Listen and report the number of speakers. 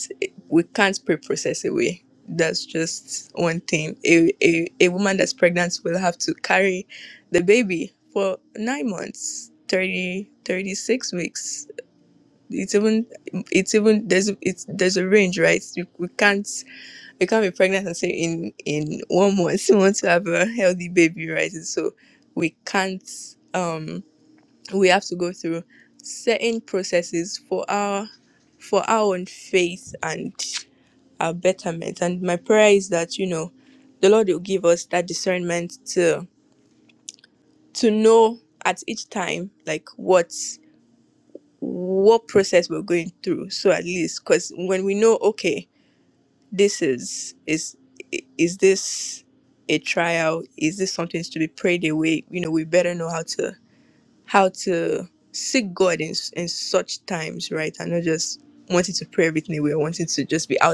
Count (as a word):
one